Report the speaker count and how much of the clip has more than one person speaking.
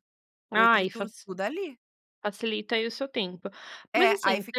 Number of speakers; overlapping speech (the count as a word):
two, about 25%